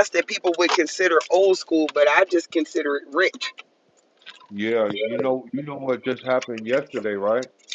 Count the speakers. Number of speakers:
2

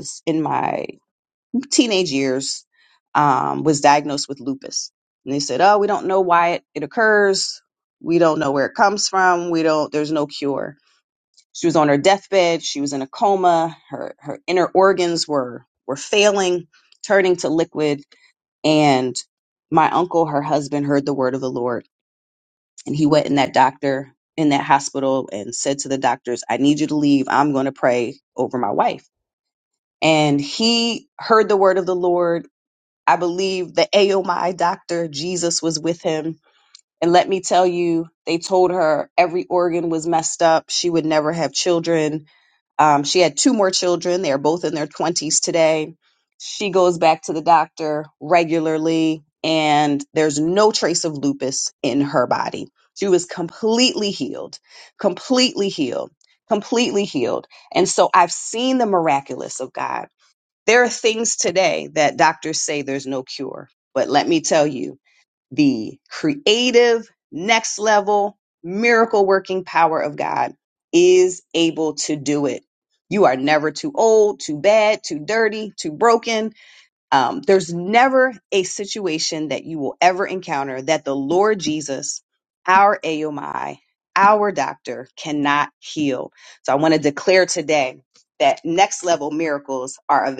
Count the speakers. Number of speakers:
1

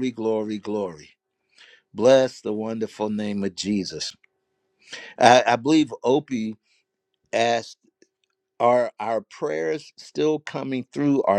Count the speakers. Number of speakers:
1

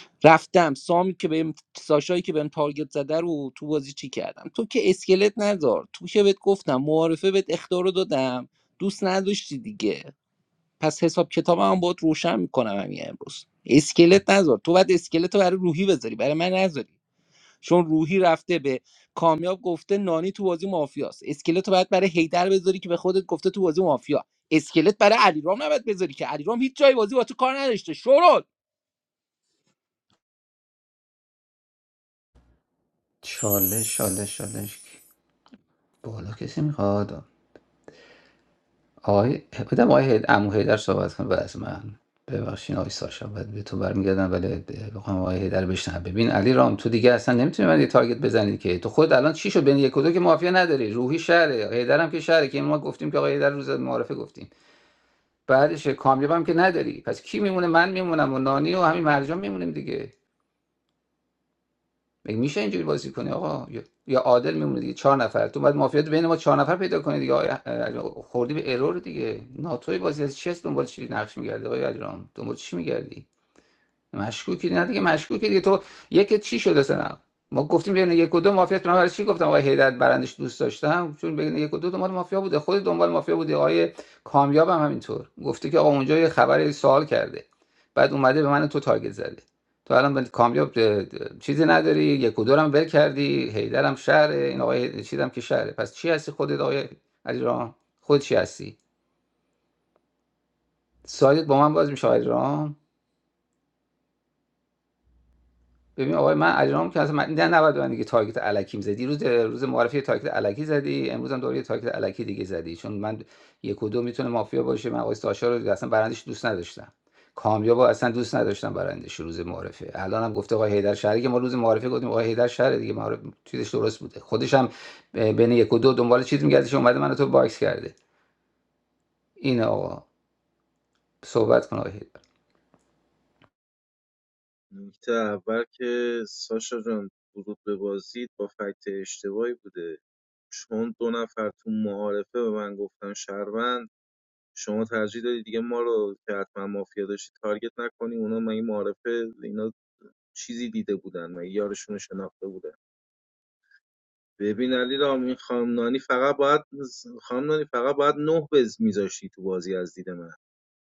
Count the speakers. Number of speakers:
3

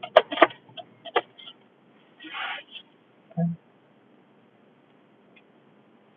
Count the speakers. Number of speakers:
0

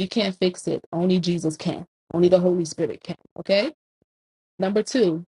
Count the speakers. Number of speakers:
1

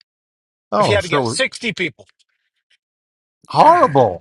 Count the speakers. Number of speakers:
2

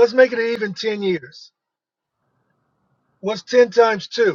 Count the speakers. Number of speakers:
1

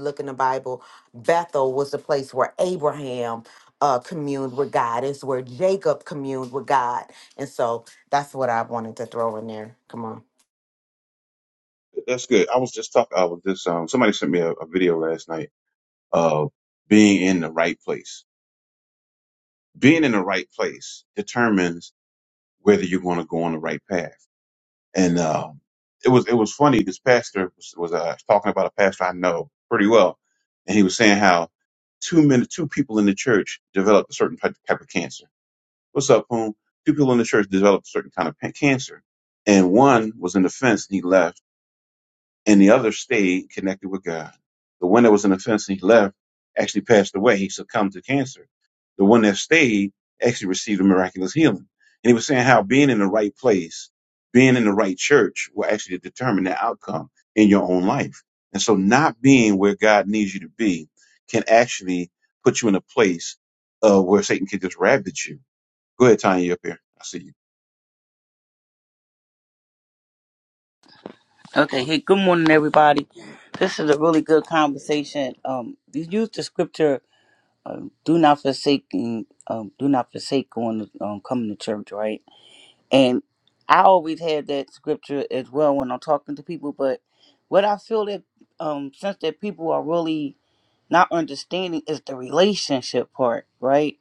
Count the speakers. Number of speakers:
3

